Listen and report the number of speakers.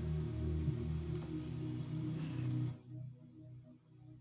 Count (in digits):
0